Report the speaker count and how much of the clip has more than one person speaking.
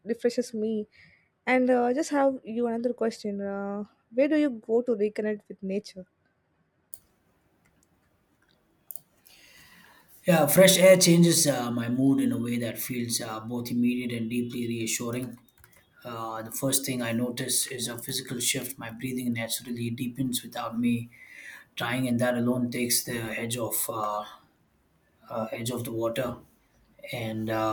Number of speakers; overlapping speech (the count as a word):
two, no overlap